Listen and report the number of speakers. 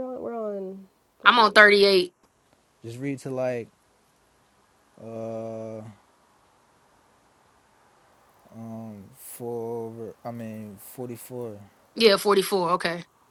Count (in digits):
3